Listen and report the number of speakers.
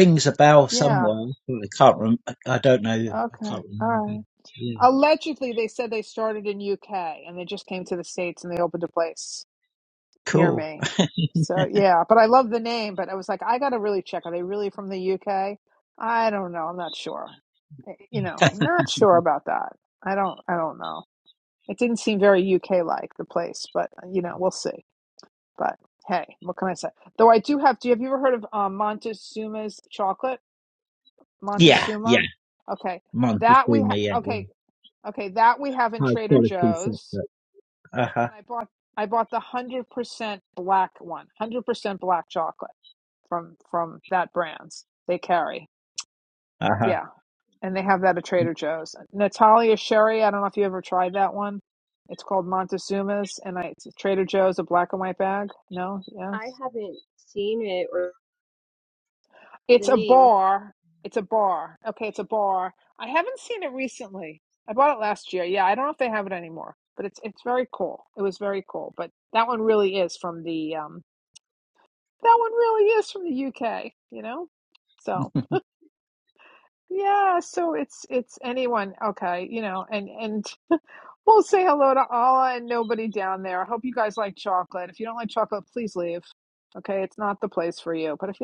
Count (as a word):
three